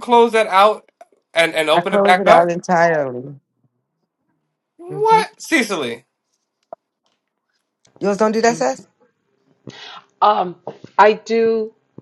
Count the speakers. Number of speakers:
3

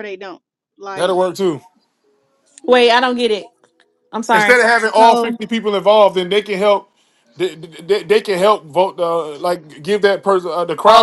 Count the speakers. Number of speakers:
3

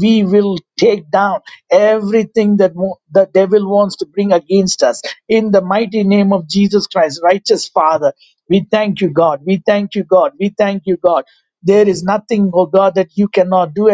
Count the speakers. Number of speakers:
1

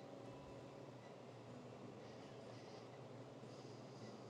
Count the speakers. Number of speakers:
0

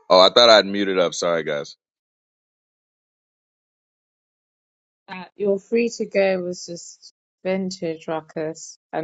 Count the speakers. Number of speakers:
2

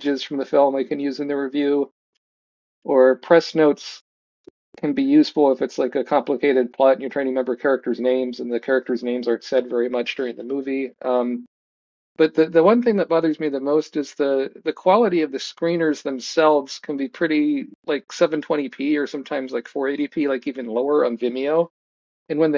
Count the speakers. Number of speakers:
1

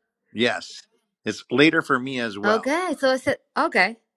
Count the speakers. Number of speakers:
2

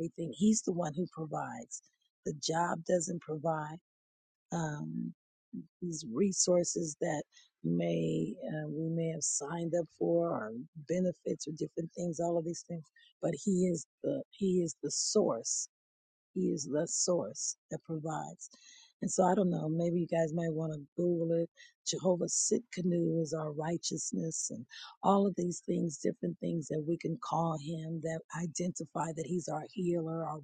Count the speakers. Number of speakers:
1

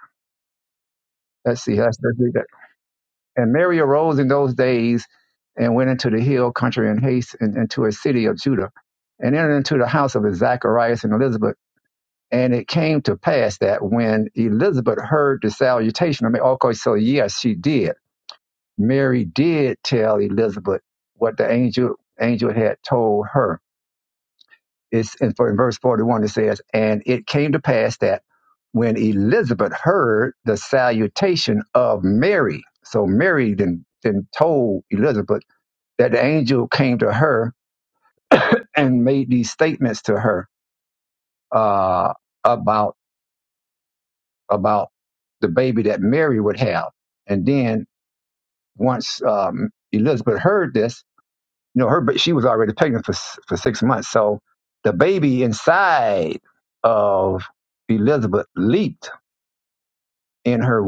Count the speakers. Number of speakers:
1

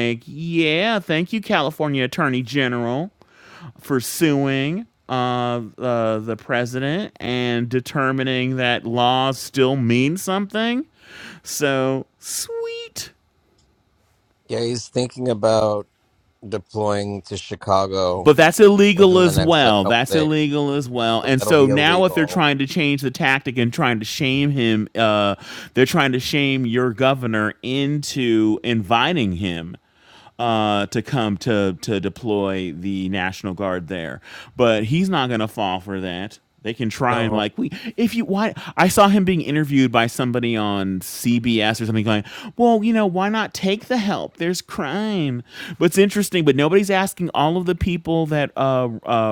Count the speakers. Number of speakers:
2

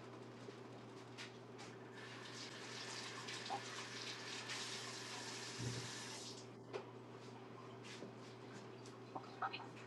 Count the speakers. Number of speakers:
0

